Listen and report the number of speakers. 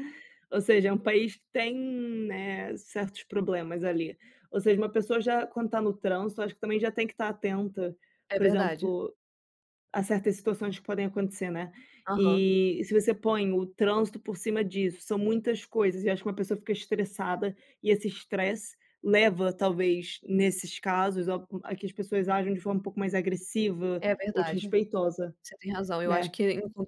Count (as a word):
two